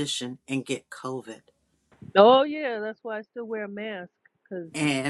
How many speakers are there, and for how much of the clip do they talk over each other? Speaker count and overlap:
two, no overlap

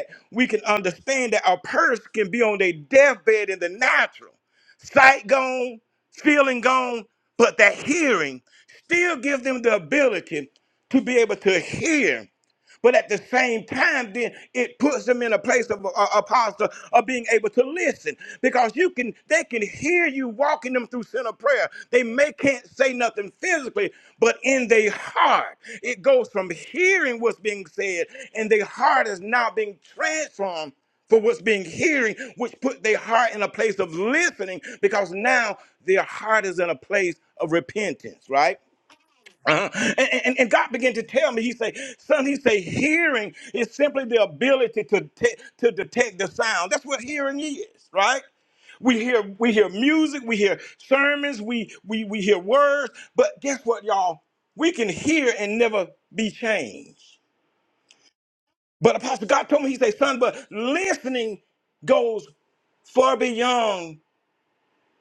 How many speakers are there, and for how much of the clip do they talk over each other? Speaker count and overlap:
one, no overlap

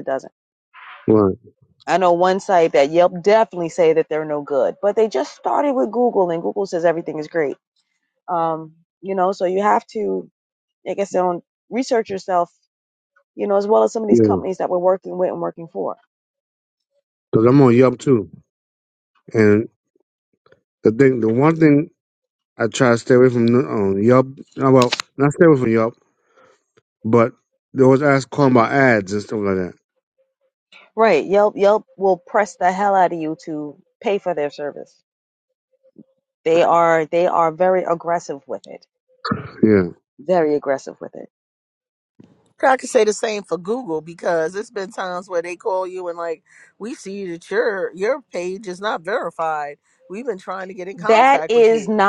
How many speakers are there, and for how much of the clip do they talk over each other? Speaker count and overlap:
three, about 2%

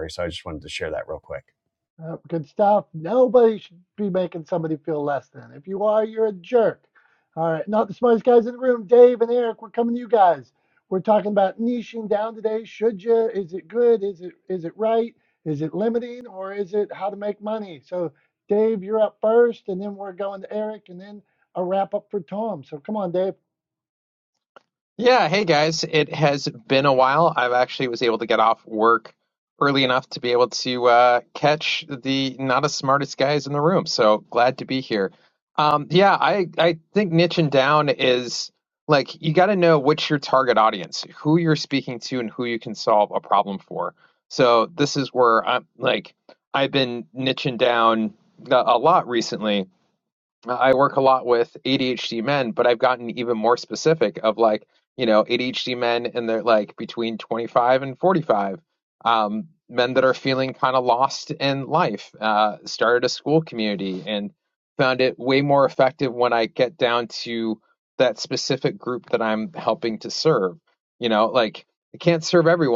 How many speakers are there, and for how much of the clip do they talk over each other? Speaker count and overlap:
three, no overlap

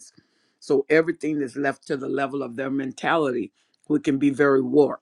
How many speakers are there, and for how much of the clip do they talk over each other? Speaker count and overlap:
one, no overlap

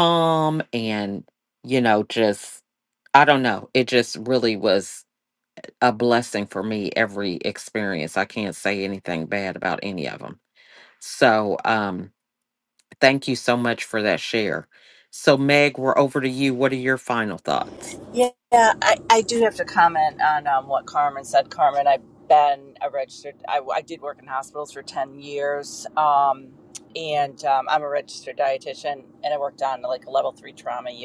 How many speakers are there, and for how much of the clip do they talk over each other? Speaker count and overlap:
two, no overlap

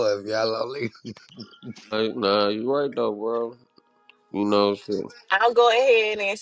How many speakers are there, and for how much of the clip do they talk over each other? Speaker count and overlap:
three, no overlap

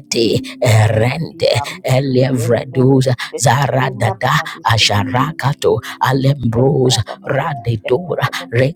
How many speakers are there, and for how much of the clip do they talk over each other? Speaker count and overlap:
two, about 63%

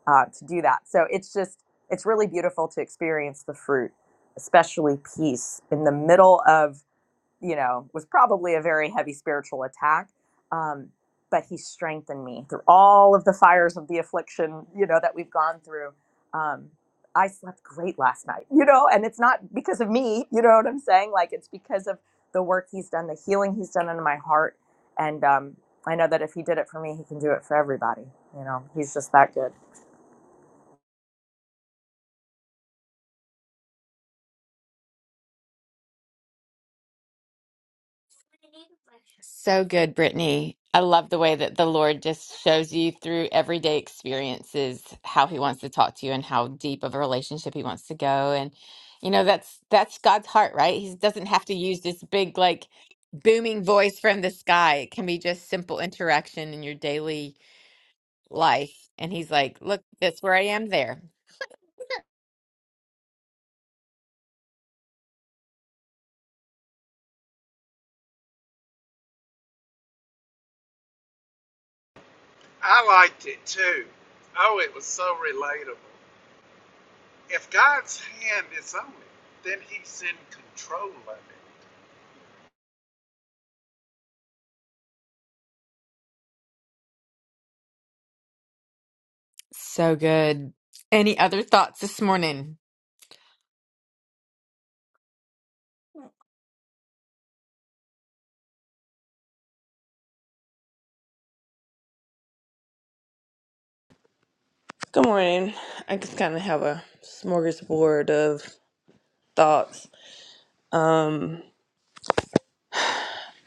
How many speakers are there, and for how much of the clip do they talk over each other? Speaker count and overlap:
four, no overlap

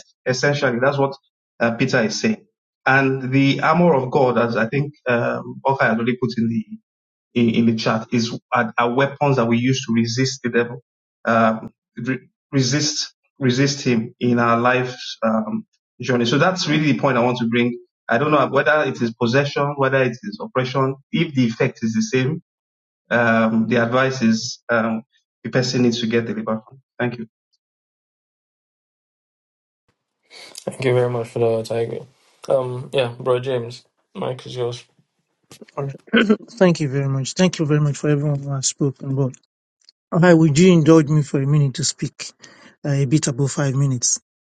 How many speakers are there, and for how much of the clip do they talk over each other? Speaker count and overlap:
three, no overlap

